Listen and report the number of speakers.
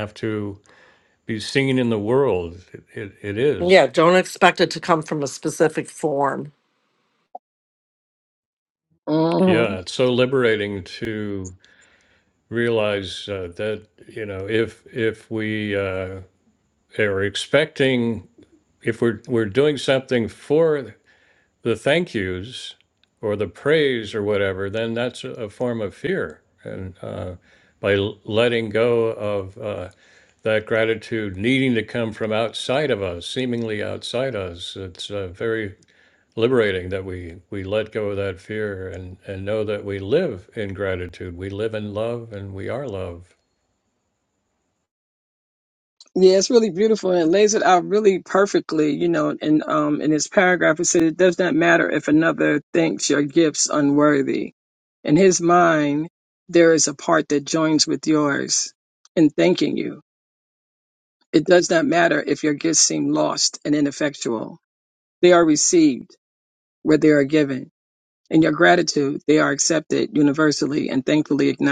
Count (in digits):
3